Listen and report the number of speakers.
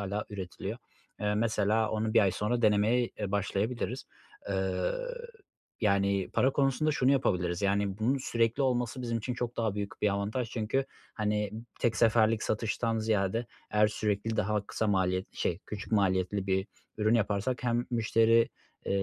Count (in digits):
1